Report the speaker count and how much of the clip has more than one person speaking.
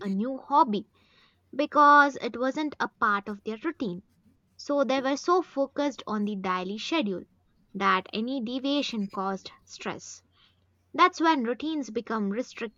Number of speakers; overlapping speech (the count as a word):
one, no overlap